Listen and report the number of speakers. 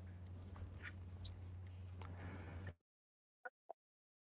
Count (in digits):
0